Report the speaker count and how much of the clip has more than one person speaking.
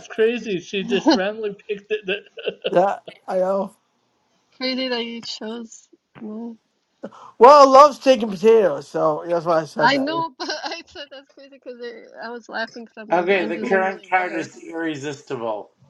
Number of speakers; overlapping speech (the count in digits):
4, about 11%